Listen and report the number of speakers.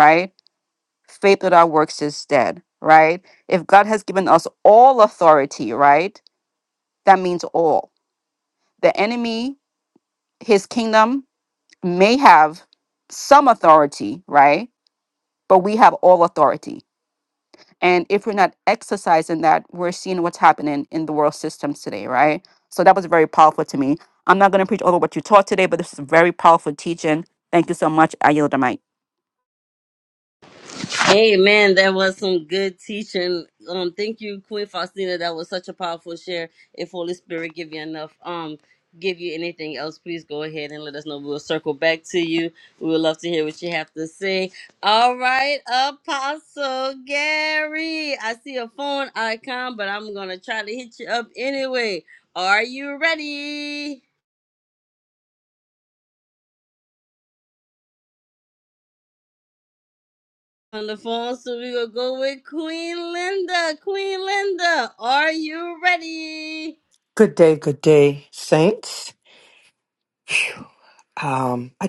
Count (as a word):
three